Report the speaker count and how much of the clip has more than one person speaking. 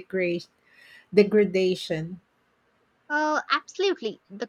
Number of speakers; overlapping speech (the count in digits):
2, no overlap